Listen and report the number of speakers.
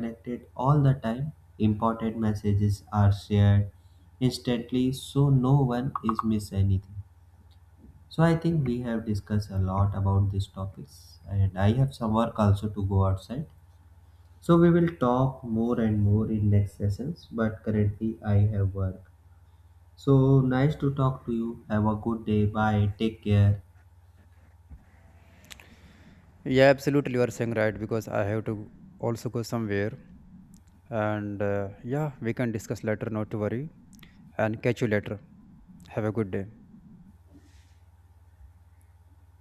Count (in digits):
2